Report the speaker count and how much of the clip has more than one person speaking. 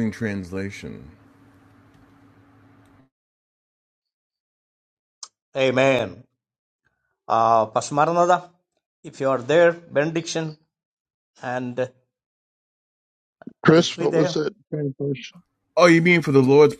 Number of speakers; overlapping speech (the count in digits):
3, about 4%